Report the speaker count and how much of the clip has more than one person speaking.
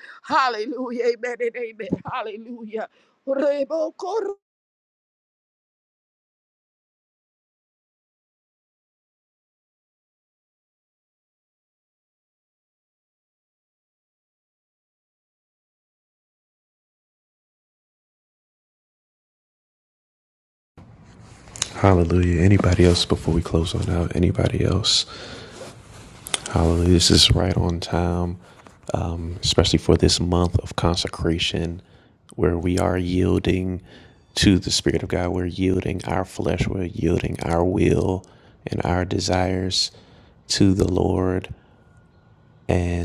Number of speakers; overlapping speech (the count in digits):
2, no overlap